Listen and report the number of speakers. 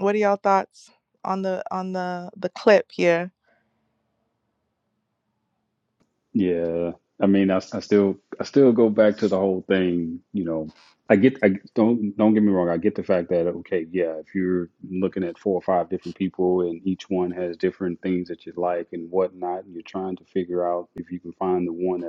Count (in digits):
2